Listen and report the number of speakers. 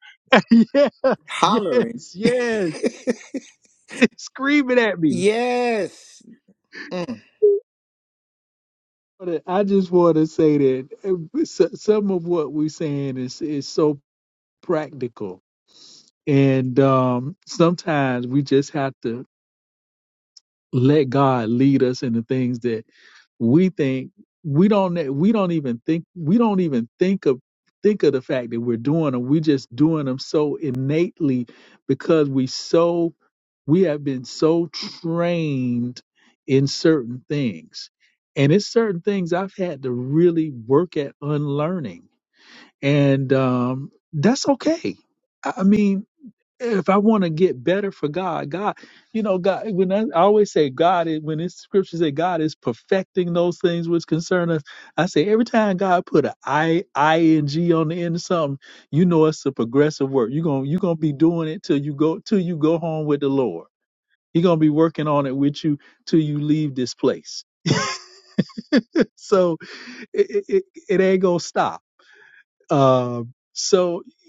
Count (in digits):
2